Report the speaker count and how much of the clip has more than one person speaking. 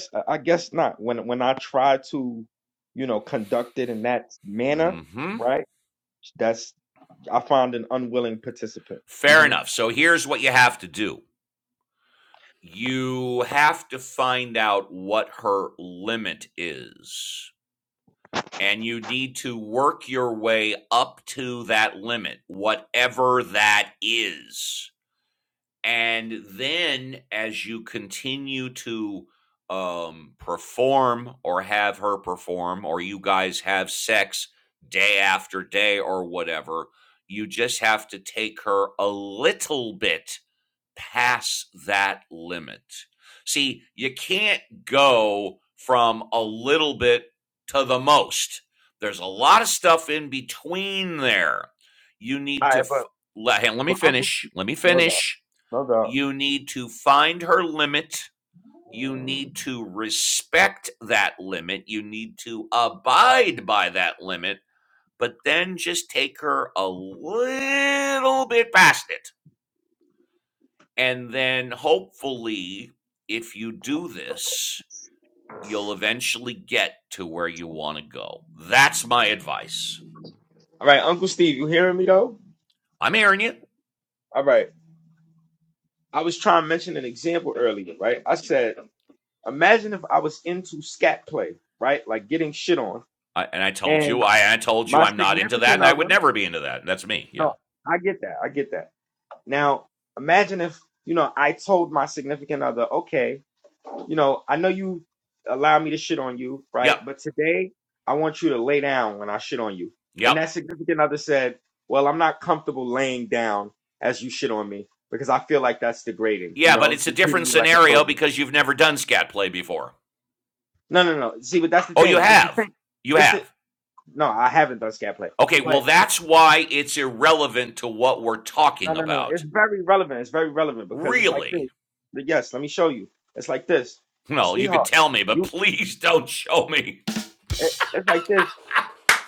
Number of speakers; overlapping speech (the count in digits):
2, about 6%